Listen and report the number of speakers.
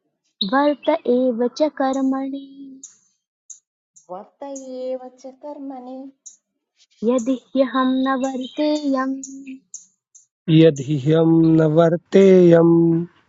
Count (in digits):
3